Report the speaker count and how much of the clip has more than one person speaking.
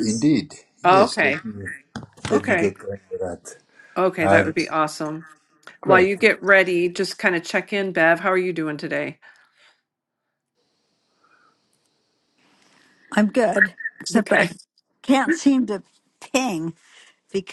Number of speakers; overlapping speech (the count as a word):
three, about 11%